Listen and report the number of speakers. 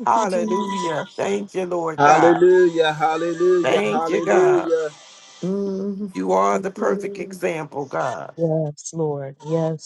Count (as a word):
four